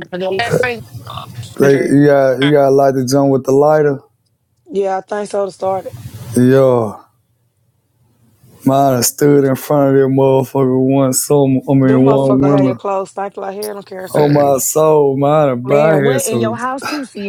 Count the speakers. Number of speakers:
four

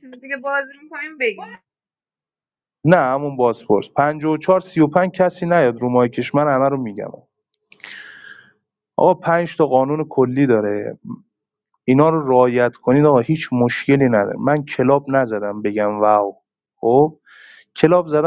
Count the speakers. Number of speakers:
two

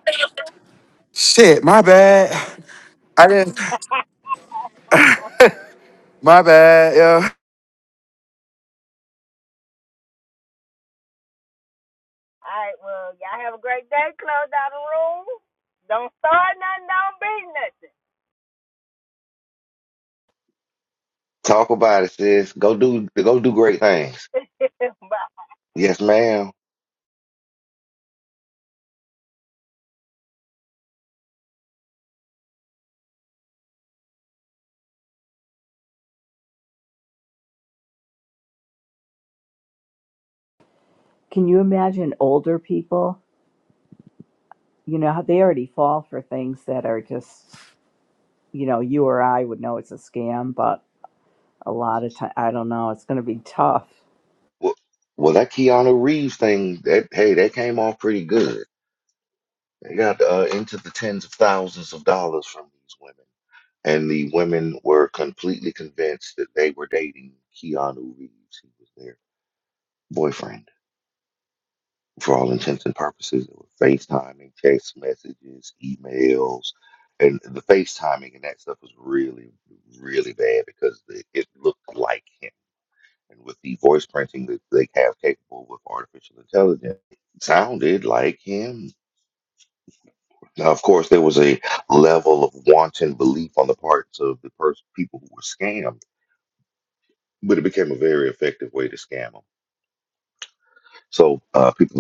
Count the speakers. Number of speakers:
four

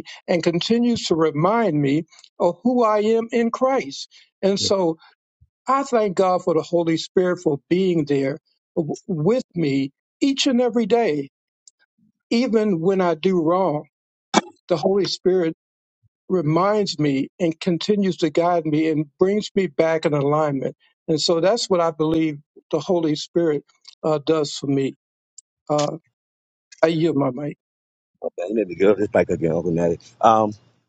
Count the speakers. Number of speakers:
two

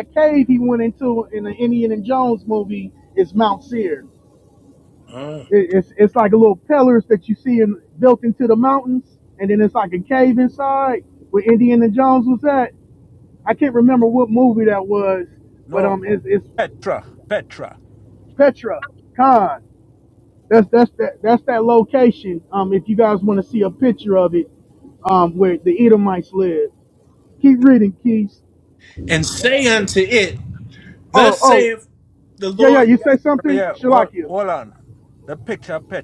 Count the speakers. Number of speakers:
three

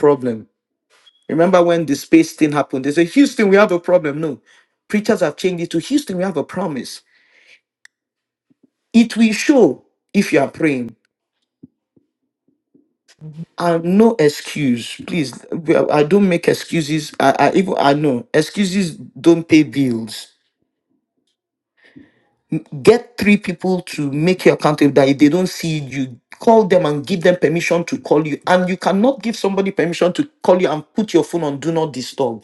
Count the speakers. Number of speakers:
one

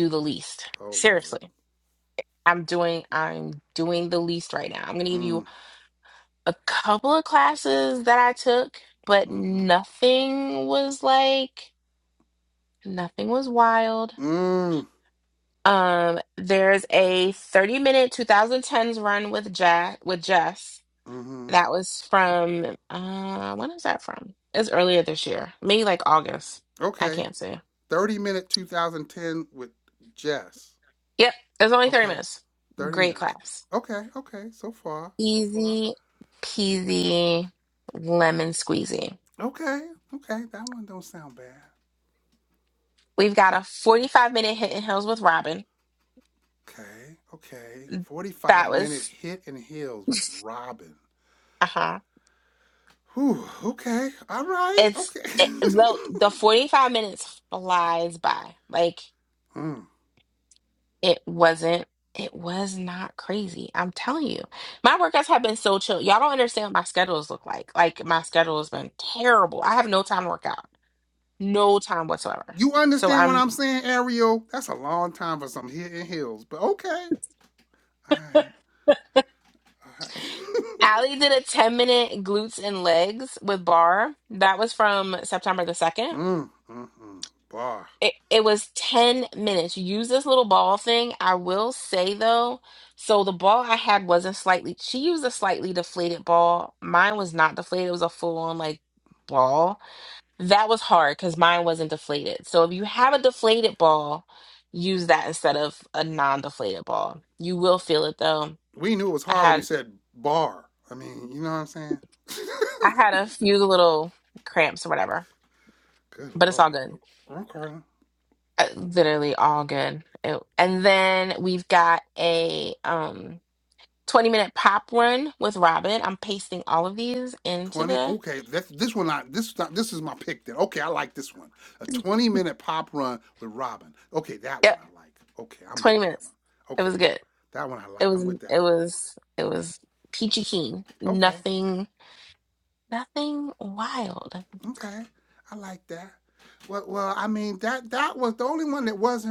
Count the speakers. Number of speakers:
two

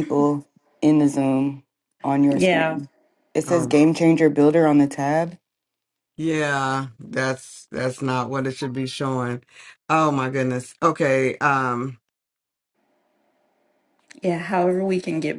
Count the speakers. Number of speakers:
three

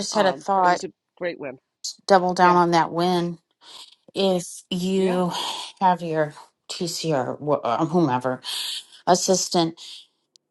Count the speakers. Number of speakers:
two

